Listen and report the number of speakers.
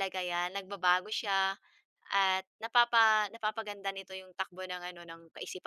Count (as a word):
one